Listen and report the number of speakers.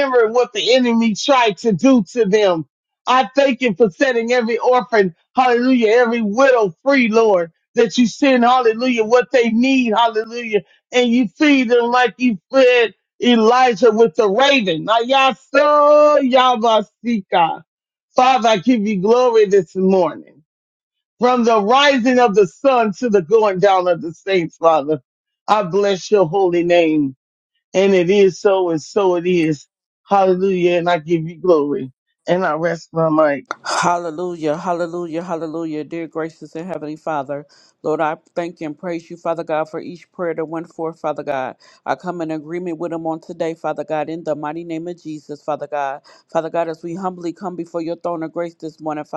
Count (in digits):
2